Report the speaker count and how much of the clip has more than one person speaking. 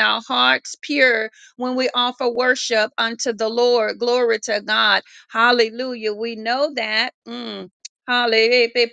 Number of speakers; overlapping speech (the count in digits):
1, no overlap